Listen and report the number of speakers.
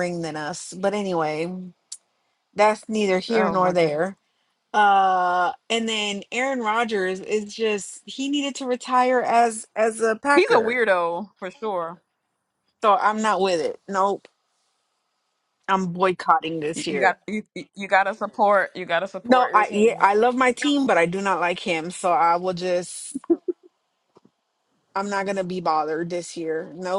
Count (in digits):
2